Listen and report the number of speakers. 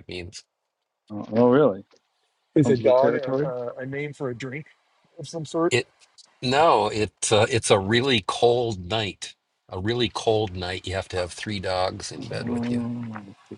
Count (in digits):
3